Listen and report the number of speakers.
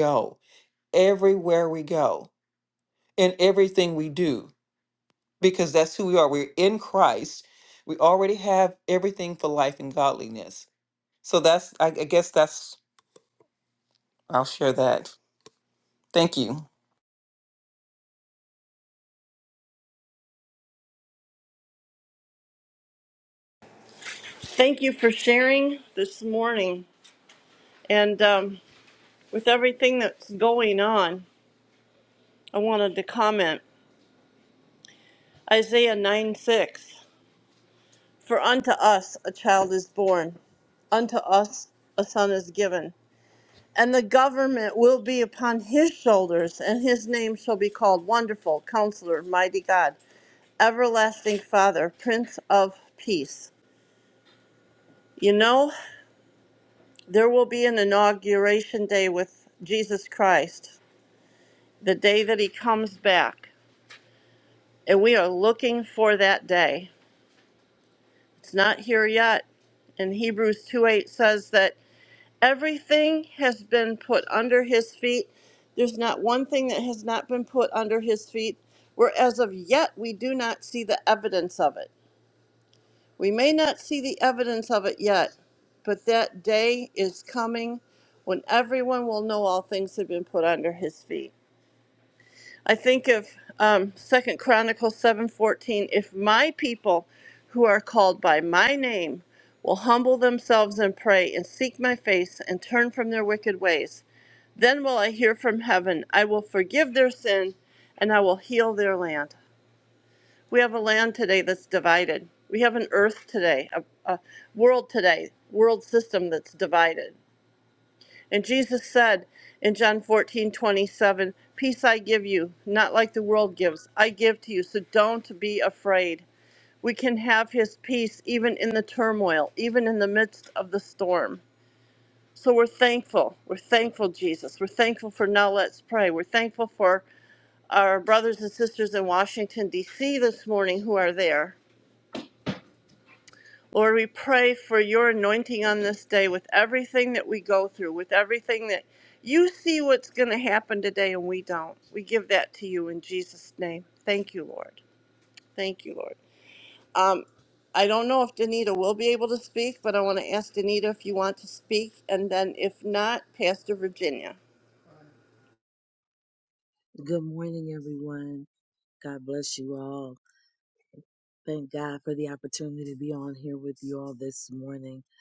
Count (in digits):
3